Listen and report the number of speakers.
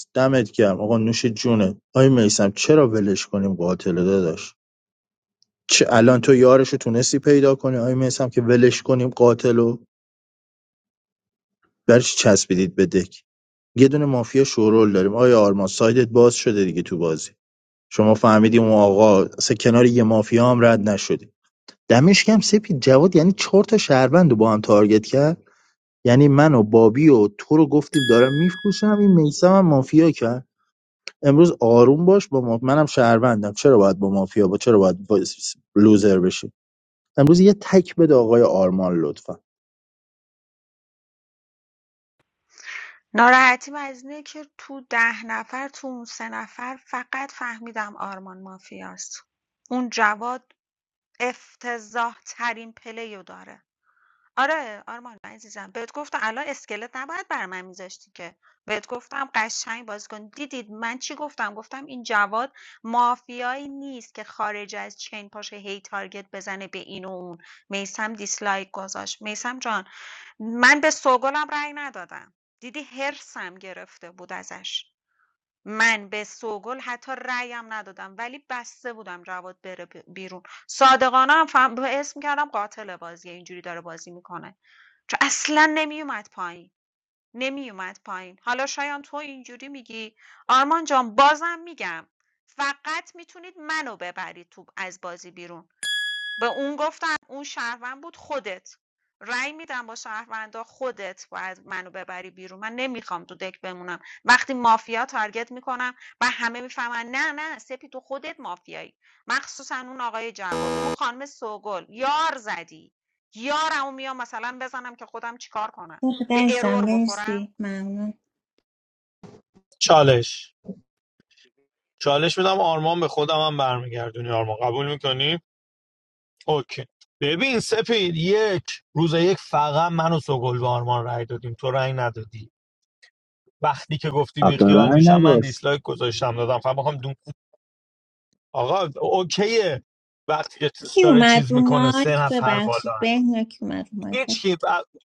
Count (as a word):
four